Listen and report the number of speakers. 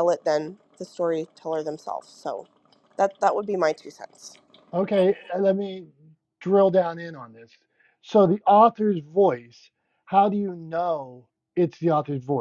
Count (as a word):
two